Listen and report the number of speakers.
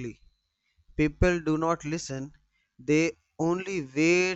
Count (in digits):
1